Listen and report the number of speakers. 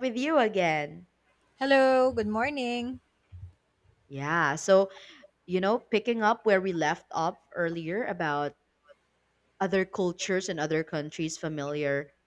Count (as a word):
two